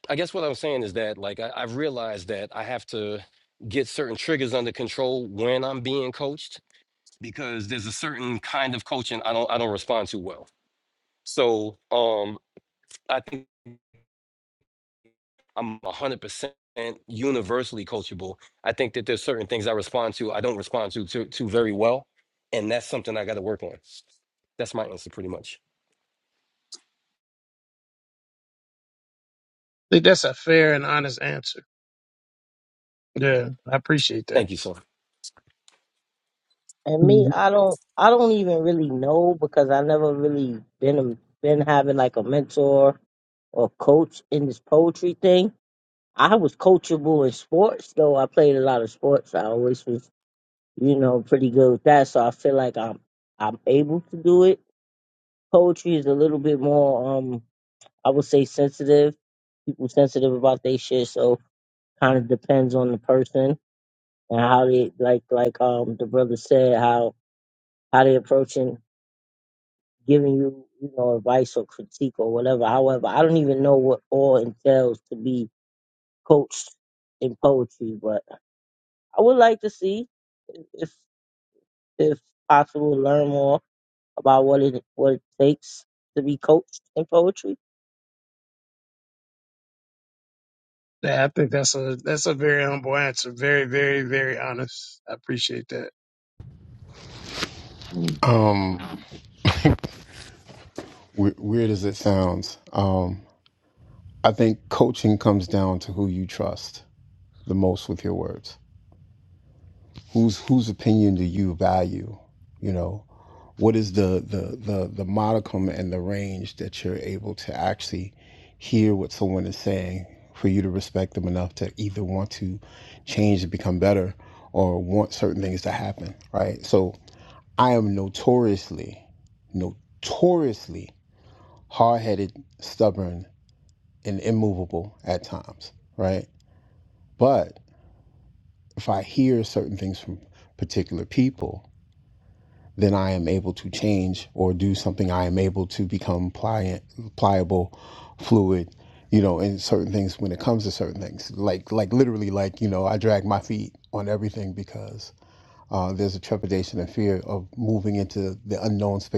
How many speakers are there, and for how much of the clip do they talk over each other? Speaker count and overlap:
four, under 1%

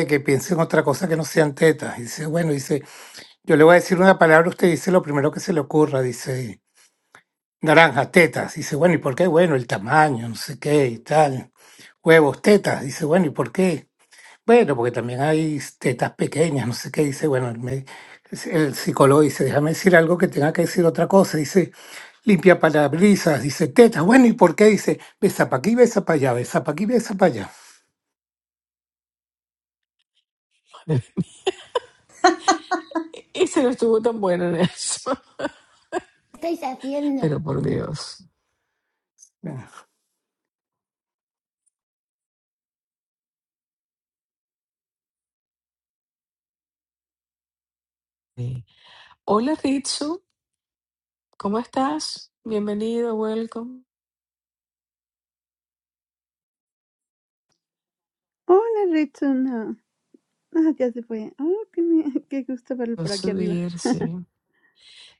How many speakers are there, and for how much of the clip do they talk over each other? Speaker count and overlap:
four, about 1%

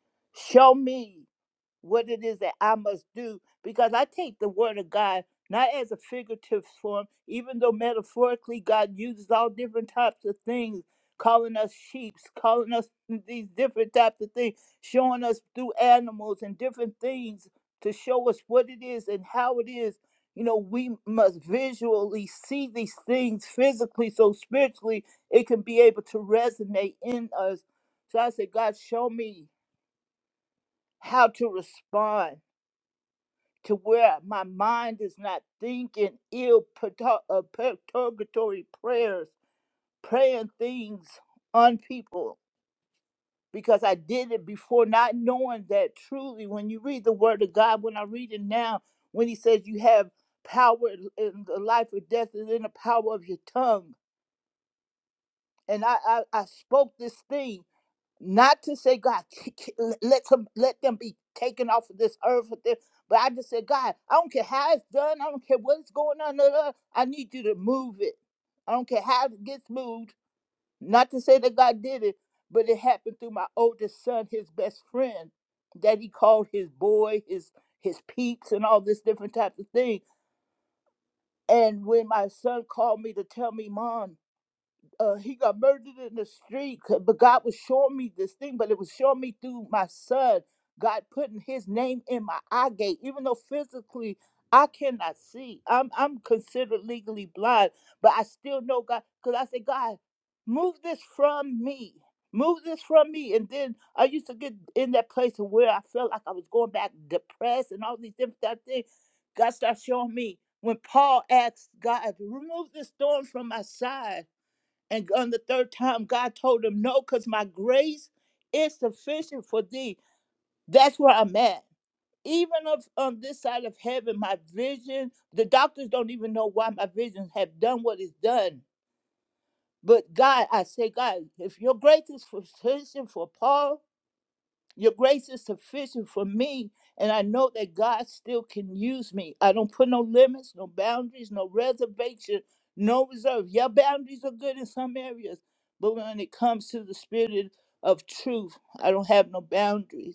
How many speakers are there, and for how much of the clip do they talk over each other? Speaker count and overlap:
one, no overlap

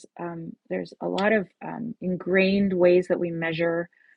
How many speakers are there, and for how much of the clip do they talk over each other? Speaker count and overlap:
one, no overlap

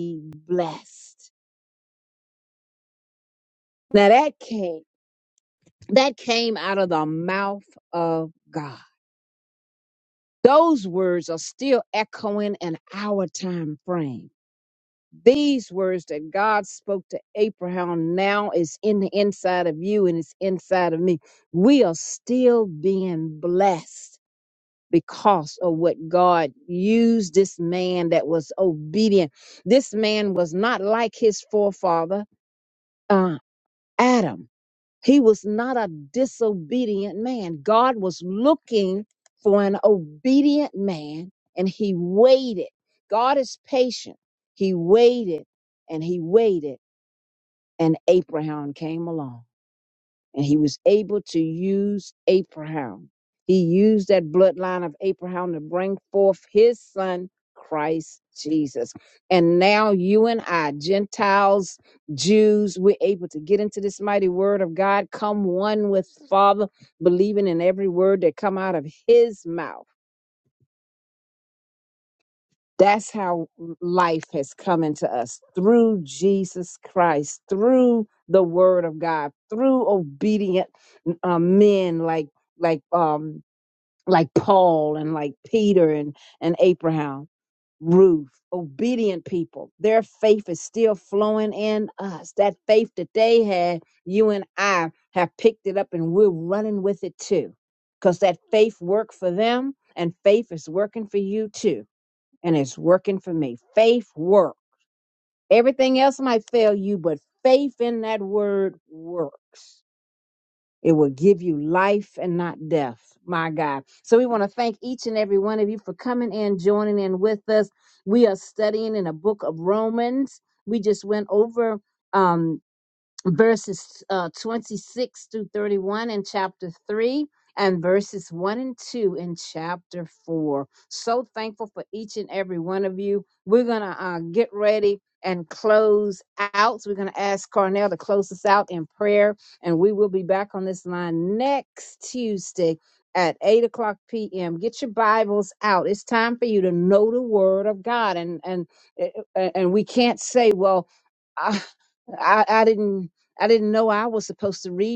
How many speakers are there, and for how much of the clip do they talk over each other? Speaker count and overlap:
one, no overlap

